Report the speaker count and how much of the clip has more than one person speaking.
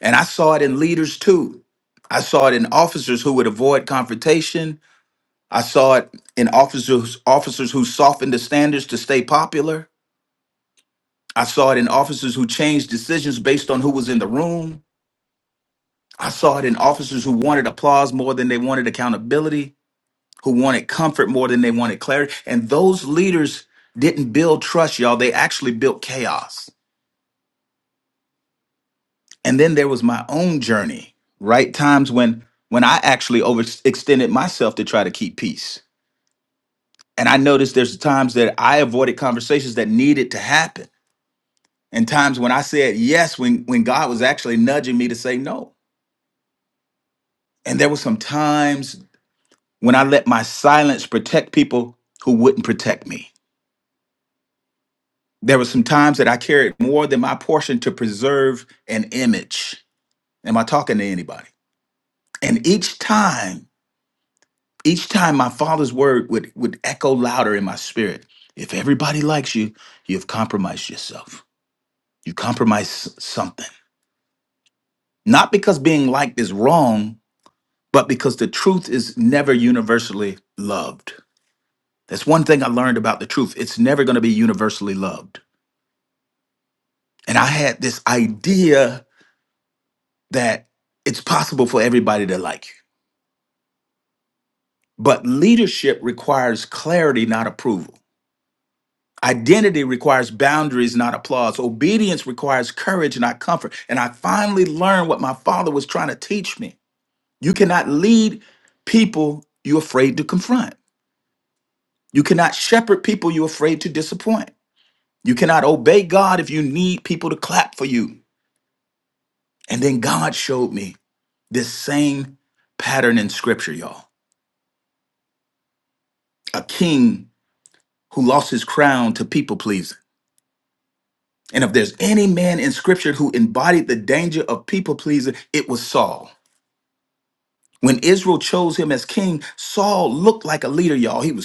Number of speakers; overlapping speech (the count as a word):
one, no overlap